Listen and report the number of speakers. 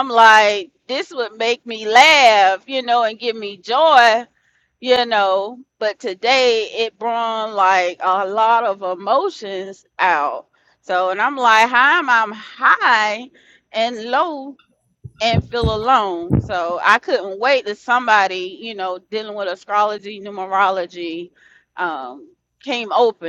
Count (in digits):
1